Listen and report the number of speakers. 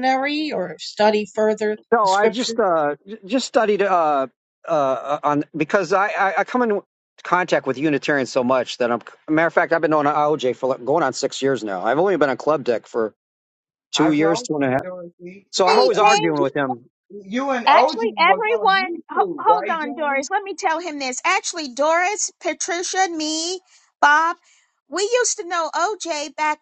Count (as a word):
four